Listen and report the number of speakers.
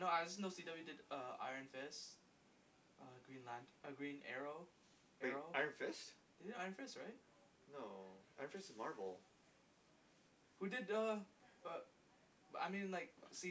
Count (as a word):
two